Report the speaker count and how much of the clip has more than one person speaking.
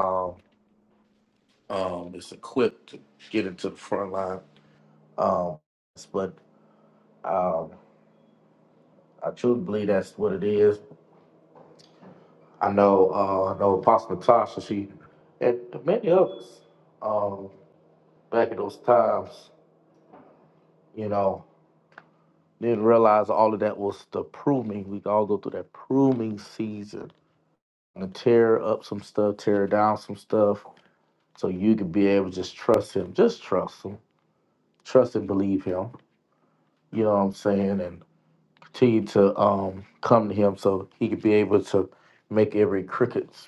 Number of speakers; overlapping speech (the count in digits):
1, no overlap